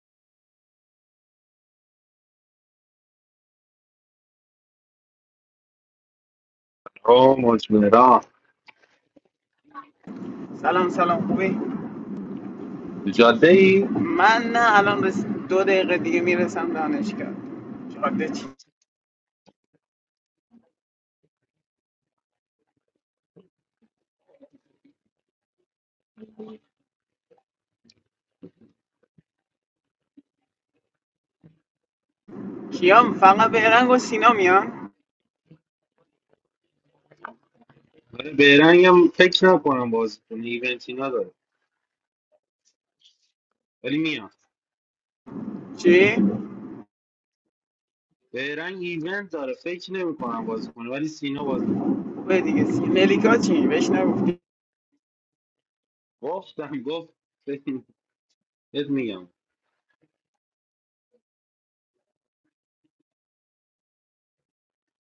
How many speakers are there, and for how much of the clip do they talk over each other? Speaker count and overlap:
2, no overlap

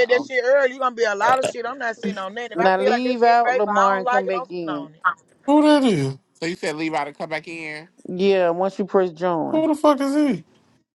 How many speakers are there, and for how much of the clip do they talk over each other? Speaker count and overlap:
4, about 24%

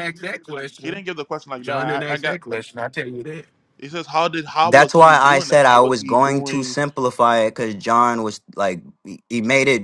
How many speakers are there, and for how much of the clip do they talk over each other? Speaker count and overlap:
3, about 30%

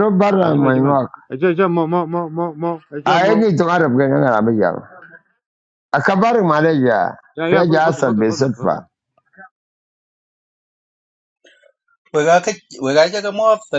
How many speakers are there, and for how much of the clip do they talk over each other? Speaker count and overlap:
3, about 16%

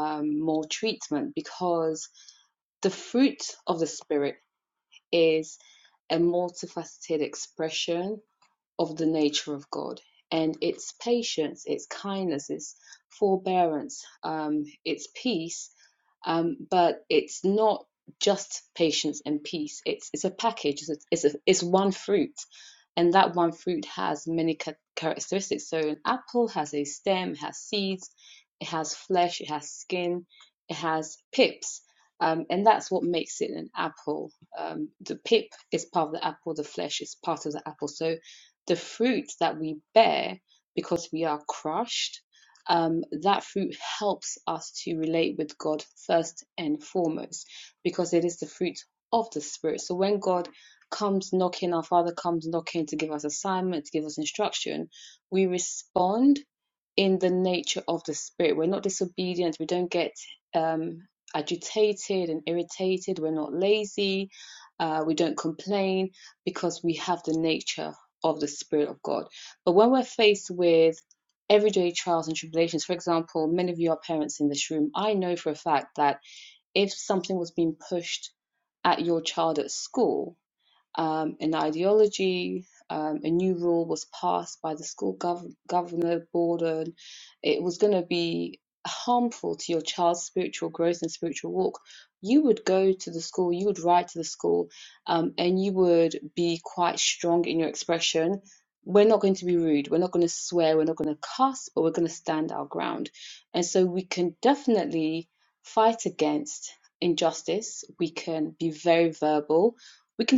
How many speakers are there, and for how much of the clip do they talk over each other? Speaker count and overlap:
1, no overlap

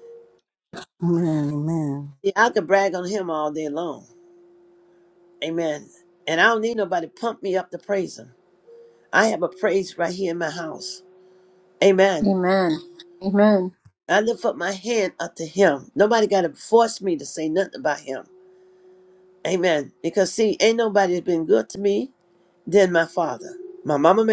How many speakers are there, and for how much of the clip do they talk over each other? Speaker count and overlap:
3, under 1%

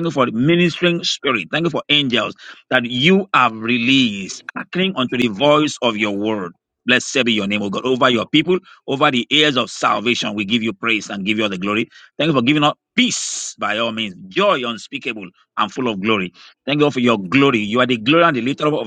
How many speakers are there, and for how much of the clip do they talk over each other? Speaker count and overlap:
1, no overlap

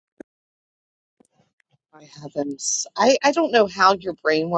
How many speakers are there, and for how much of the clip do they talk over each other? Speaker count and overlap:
1, no overlap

